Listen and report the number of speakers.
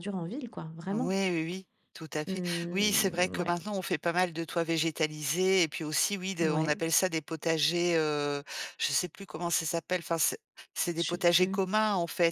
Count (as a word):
two